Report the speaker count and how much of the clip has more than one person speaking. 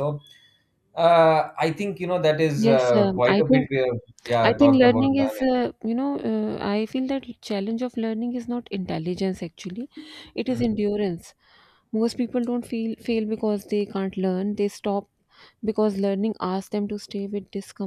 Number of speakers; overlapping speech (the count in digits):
2, about 13%